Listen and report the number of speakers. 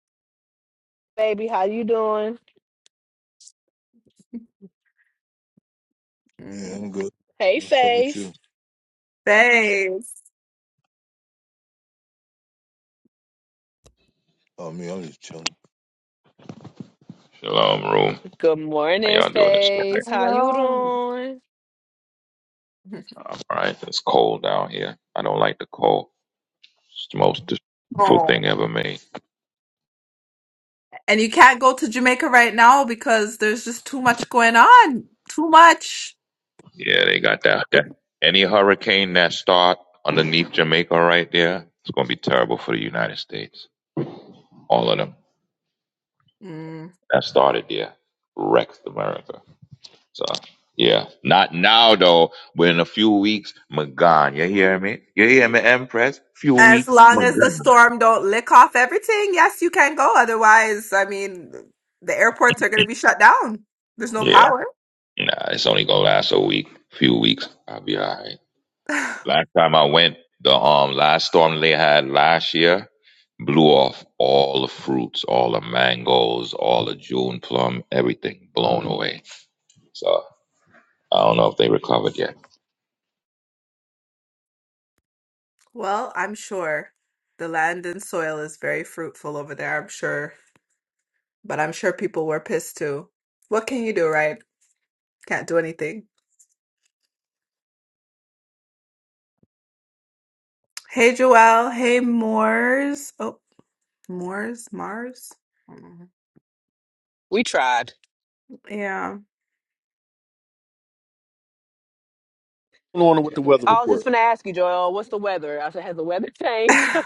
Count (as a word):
five